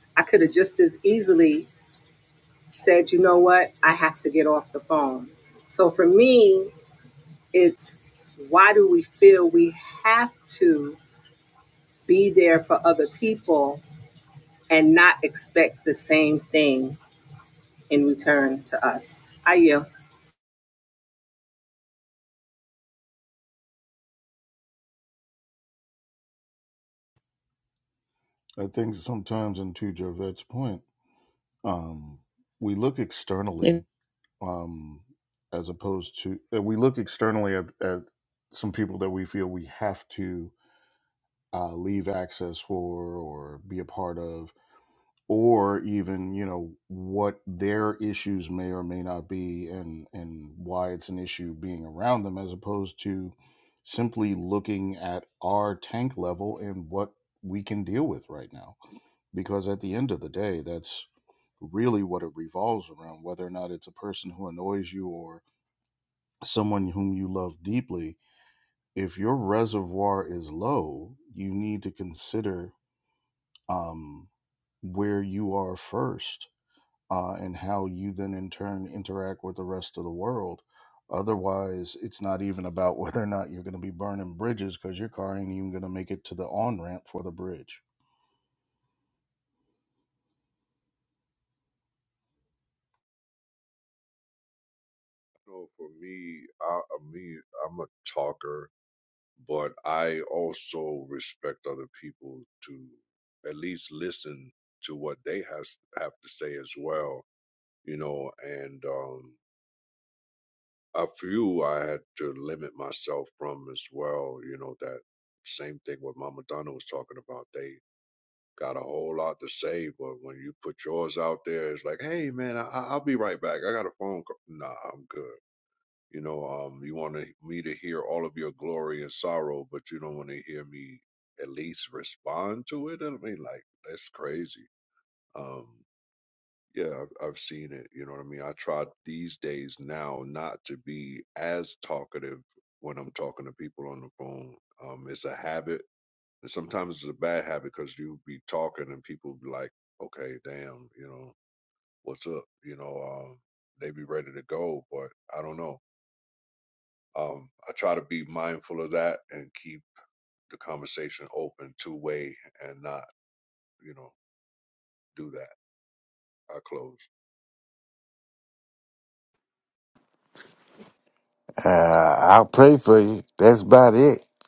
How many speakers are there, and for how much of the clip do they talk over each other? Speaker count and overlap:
4, no overlap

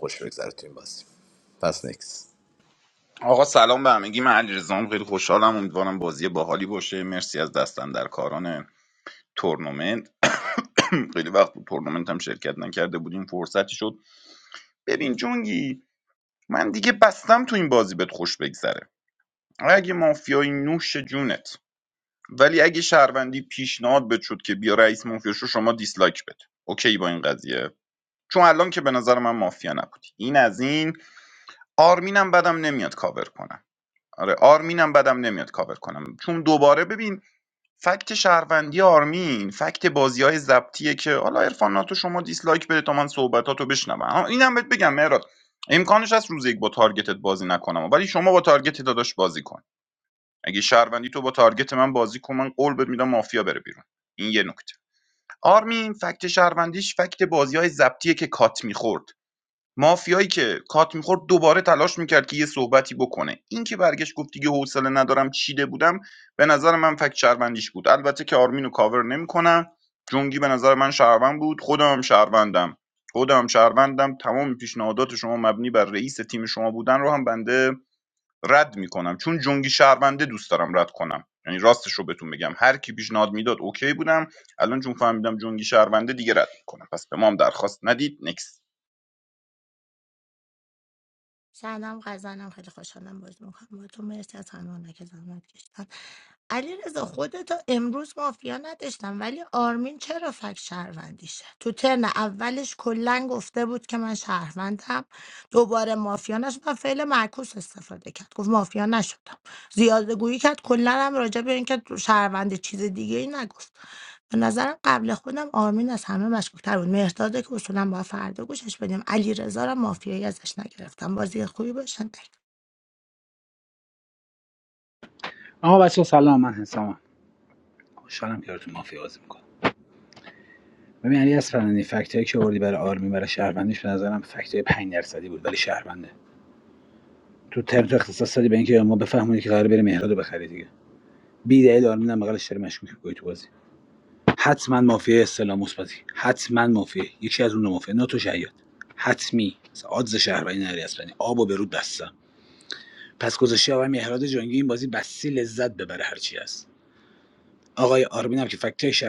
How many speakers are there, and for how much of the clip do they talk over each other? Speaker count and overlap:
4, no overlap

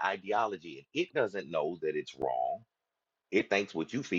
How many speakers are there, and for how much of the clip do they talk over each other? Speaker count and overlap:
1, no overlap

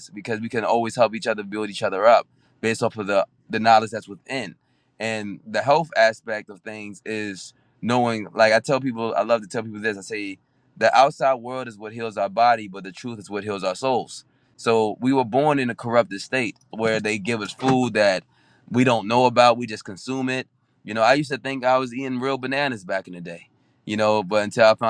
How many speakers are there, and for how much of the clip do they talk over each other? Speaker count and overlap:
1, no overlap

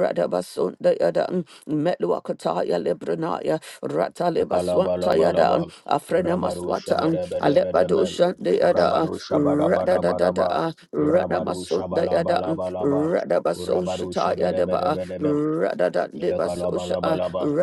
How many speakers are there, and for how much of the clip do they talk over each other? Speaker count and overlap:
2, about 45%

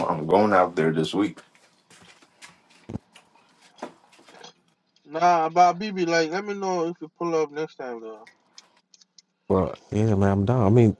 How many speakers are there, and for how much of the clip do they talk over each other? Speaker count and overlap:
3, no overlap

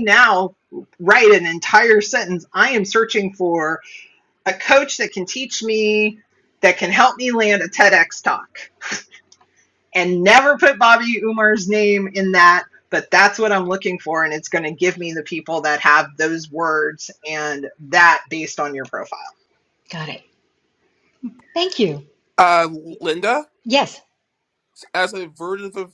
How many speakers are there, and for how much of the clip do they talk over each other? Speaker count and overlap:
3, no overlap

